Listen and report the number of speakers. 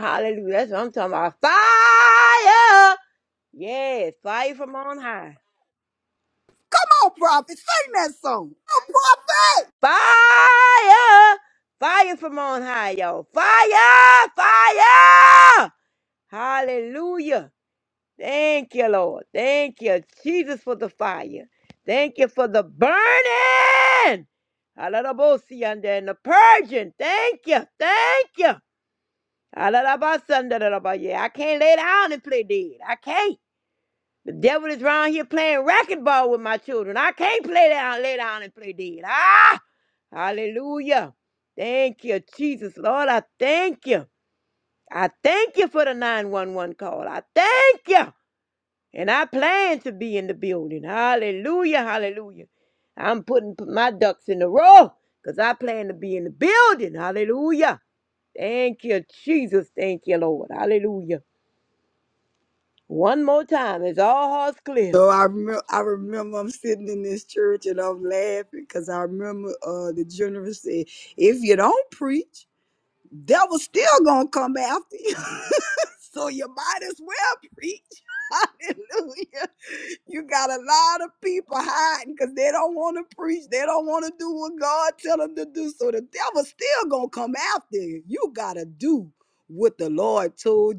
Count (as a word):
two